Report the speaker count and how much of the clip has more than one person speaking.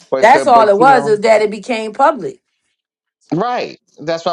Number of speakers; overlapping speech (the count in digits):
2, about 22%